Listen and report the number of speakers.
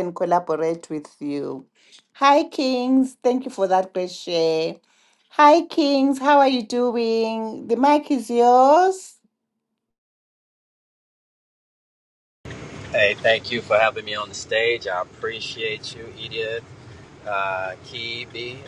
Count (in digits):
2